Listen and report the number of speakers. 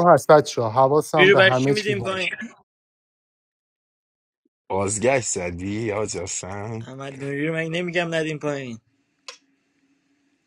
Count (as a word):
three